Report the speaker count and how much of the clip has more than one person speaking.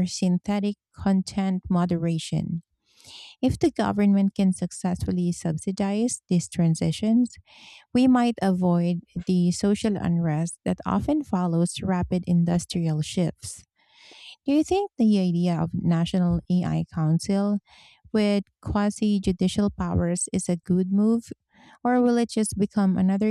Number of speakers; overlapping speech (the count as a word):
one, no overlap